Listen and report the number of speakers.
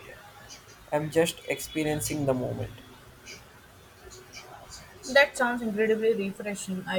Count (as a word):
two